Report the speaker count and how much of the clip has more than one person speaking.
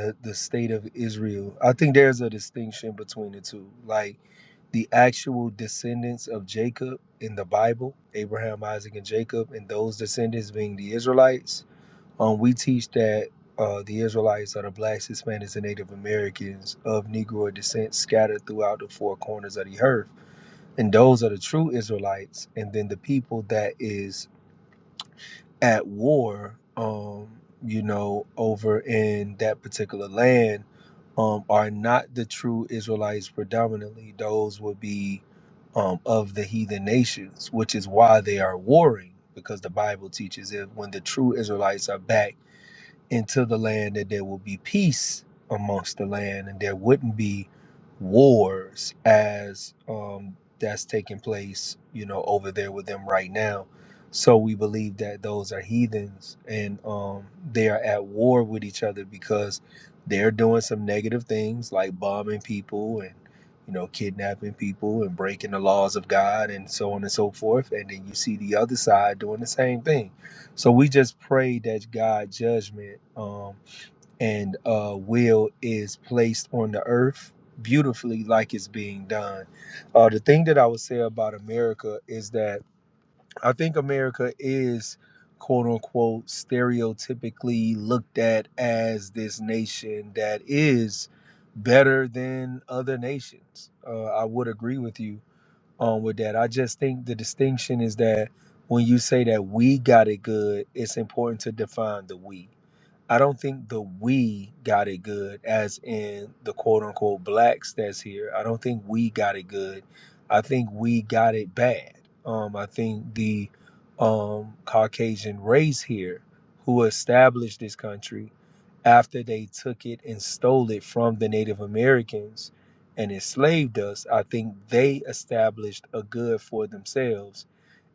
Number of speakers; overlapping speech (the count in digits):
1, no overlap